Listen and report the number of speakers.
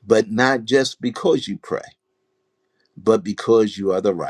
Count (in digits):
1